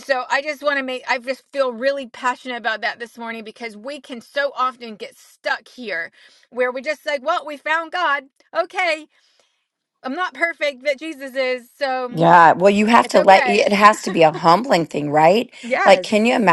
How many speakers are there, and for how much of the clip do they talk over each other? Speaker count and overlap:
2, about 6%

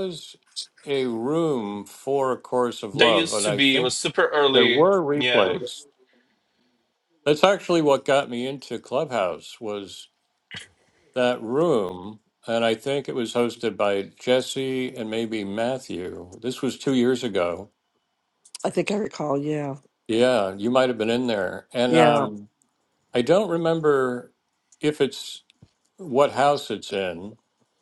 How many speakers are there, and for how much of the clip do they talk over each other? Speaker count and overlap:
3, about 9%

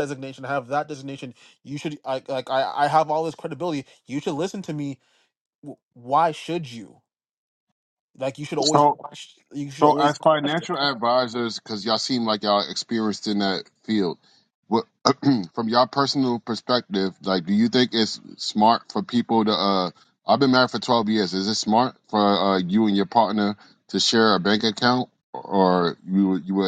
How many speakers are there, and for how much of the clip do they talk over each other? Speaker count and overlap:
2, about 3%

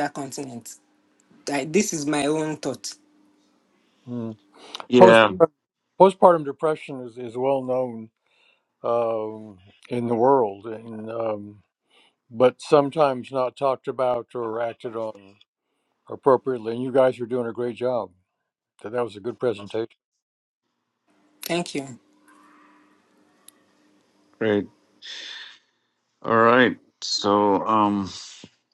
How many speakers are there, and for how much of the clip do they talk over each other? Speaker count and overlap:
3, about 1%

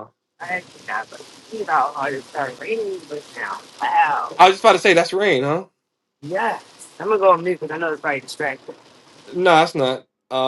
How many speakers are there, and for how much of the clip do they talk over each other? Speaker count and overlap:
2, no overlap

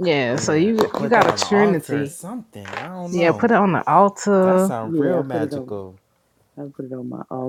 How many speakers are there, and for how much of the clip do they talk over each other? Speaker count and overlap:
3, about 45%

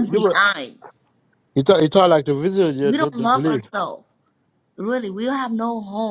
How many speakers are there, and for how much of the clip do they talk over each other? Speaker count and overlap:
2, about 19%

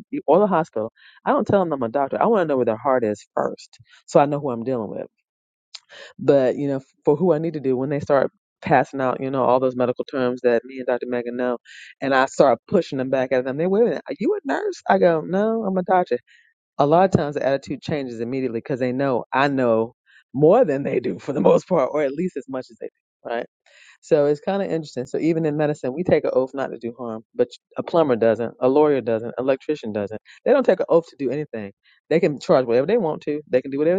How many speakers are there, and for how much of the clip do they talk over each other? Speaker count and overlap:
1, no overlap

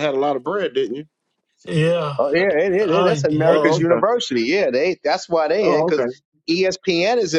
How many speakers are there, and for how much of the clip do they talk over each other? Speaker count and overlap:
3, about 23%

